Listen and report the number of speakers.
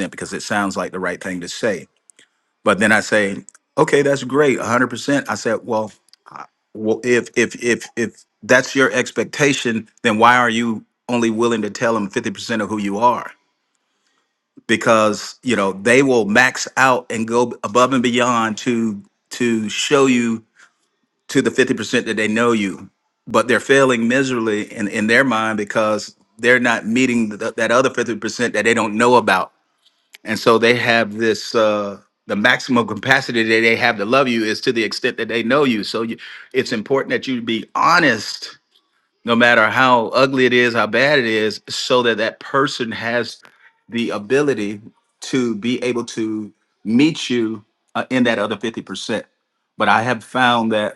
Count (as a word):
one